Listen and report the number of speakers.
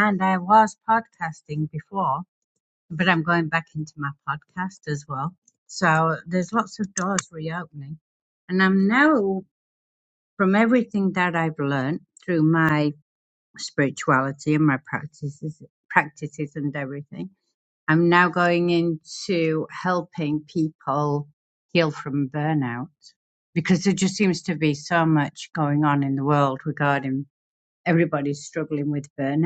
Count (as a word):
one